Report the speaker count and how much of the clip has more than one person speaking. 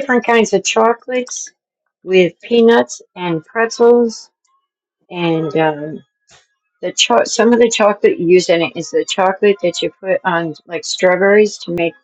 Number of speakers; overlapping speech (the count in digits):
1, no overlap